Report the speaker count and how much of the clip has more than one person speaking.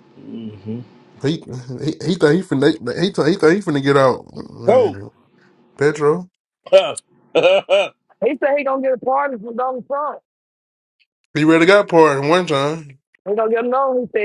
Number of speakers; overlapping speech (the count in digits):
3, about 2%